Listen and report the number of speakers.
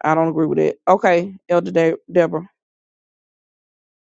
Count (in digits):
1